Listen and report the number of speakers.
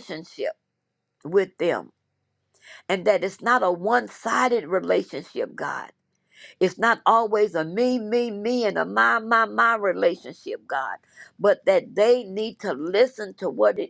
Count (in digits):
1